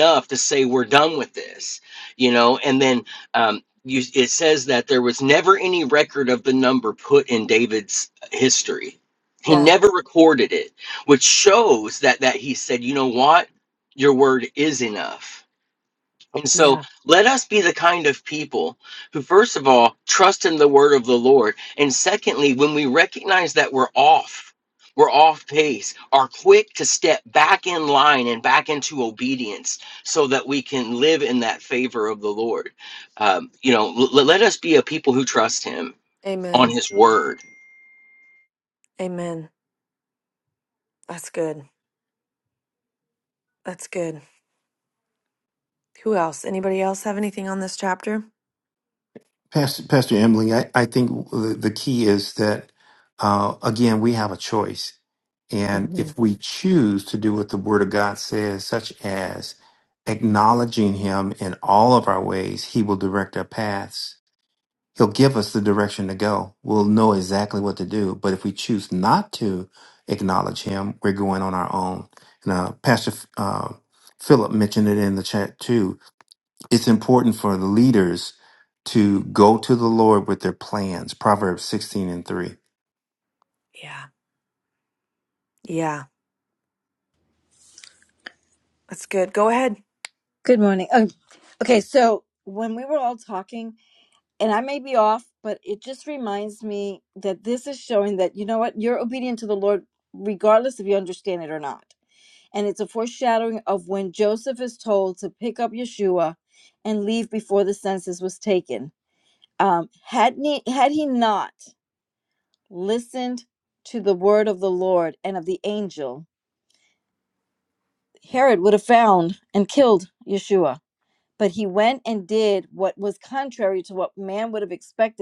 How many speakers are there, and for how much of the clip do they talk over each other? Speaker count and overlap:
four, about 1%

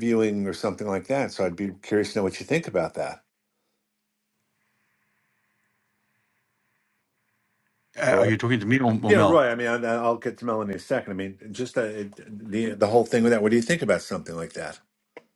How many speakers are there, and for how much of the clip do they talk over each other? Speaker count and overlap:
two, about 3%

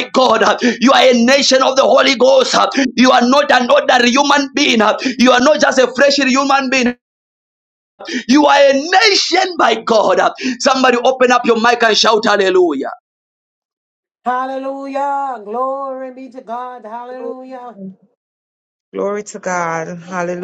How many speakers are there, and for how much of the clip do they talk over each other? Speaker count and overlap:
three, no overlap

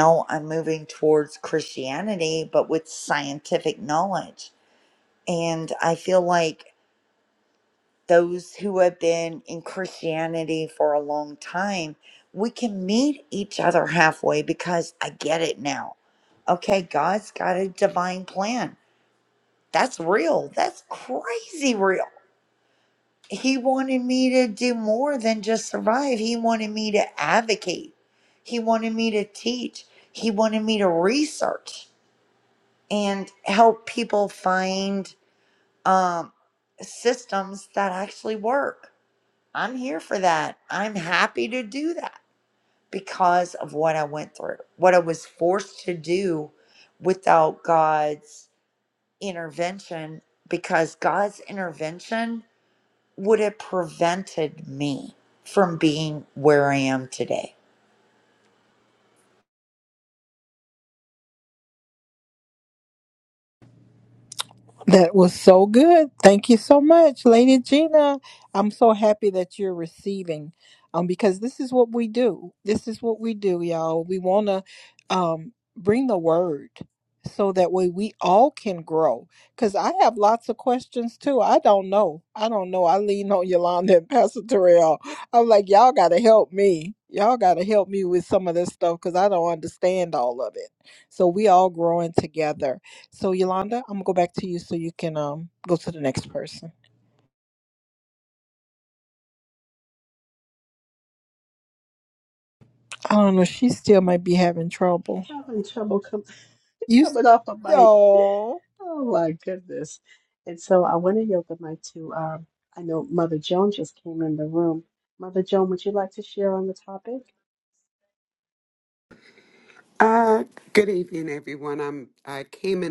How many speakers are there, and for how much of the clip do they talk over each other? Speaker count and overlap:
four, under 1%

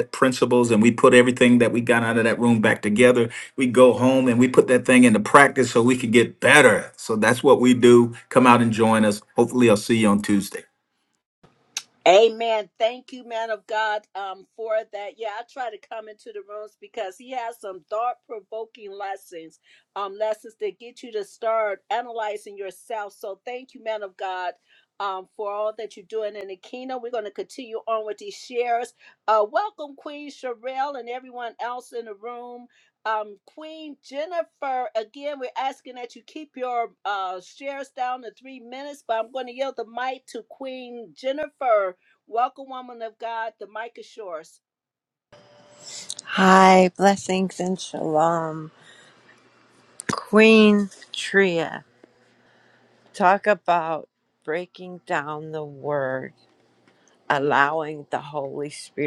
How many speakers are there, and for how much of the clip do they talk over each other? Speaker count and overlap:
three, no overlap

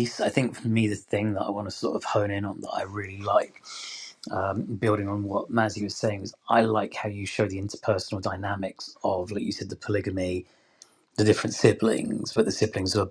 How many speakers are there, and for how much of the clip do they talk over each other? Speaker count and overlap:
one, no overlap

